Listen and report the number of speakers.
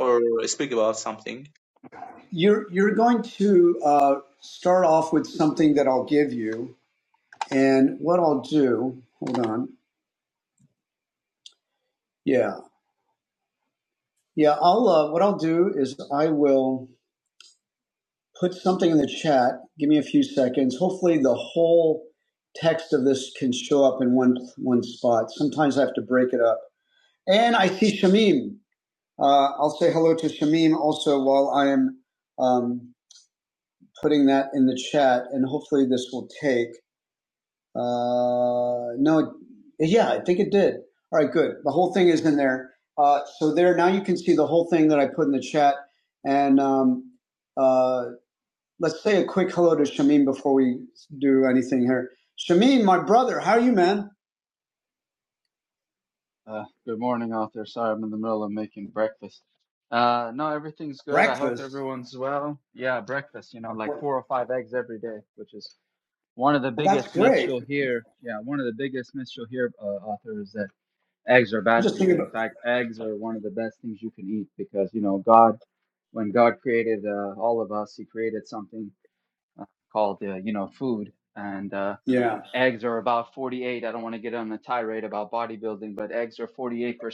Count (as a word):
three